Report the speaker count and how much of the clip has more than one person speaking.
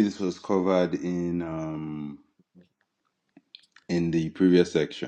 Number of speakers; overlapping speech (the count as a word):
one, no overlap